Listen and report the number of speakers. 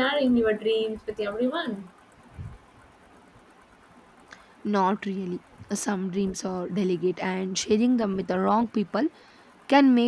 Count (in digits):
2